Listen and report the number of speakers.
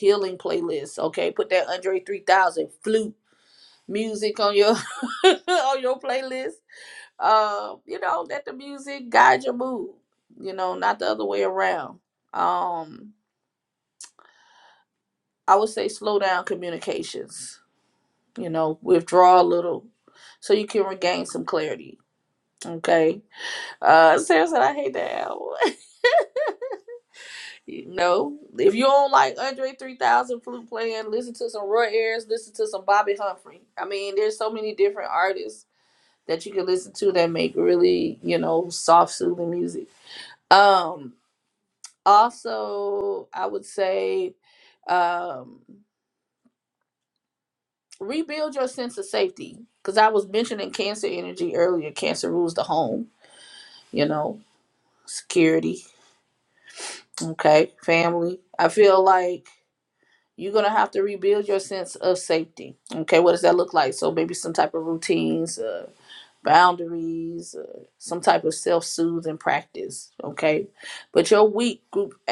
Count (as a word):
one